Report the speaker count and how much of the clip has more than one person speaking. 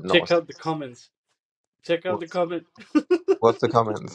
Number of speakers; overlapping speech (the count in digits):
2, about 7%